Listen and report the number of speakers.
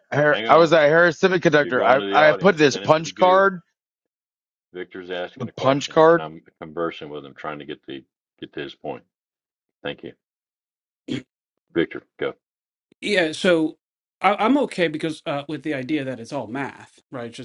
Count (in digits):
3